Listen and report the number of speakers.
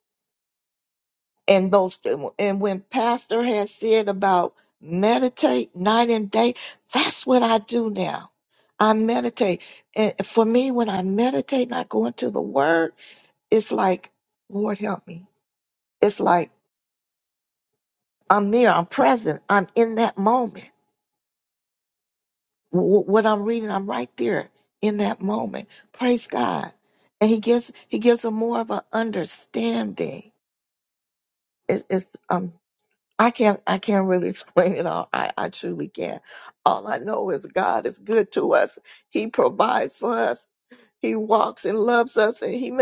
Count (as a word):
one